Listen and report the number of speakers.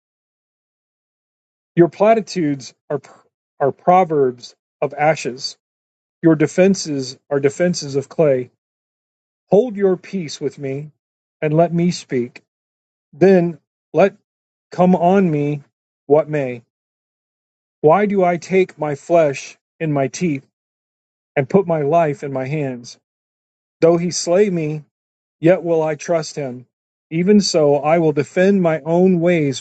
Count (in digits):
1